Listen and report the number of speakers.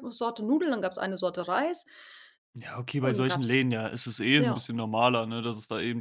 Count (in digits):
2